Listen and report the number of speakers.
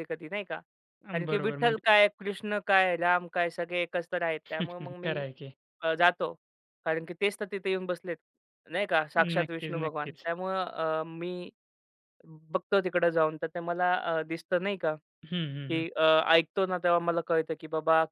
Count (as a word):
two